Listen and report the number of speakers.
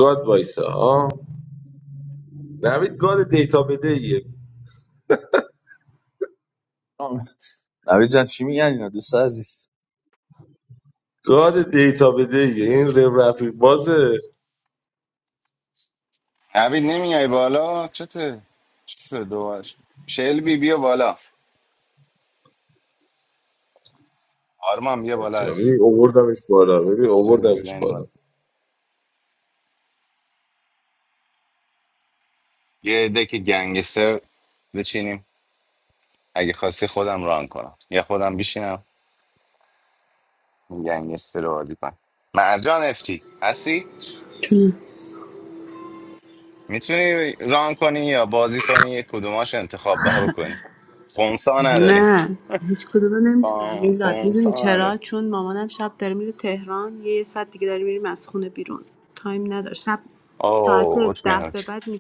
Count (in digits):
4